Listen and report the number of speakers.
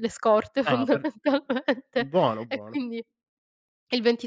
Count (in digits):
2